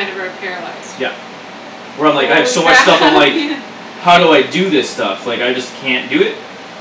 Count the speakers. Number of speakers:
two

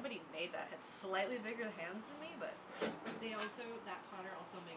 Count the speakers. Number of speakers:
two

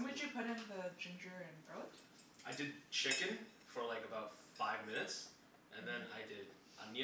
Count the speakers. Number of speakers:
two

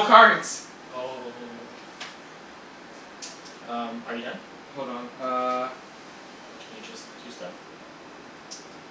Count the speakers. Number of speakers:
two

